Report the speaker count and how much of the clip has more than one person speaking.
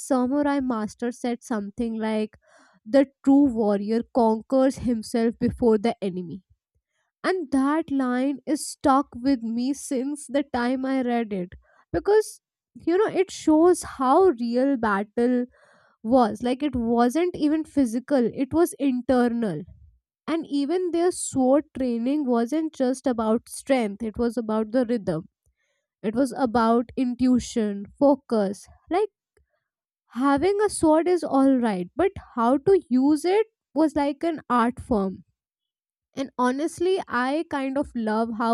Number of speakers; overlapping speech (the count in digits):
1, no overlap